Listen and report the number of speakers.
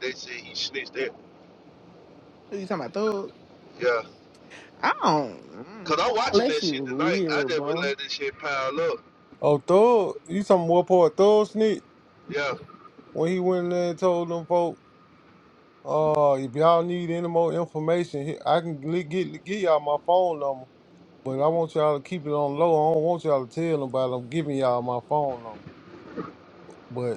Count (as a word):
three